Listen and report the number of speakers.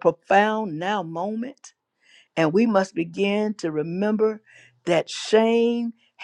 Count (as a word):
one